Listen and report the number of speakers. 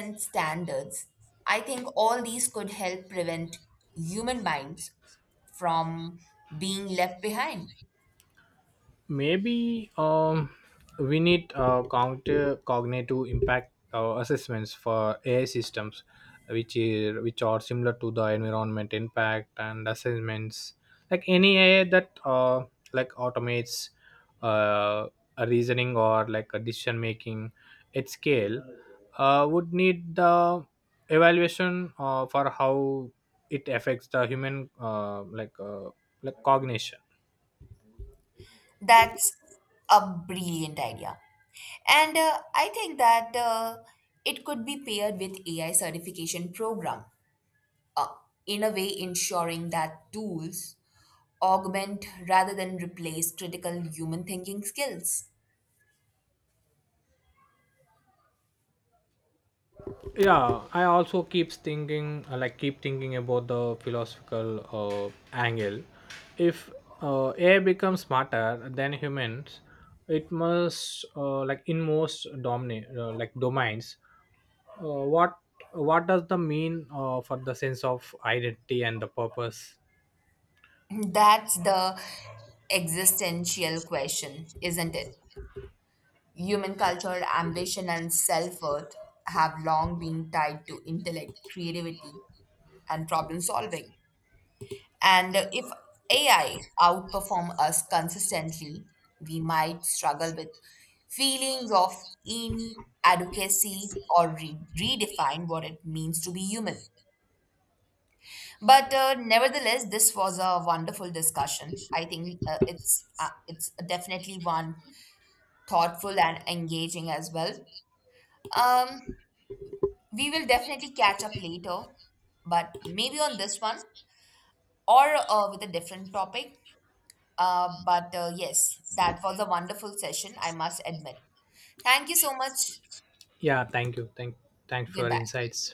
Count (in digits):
2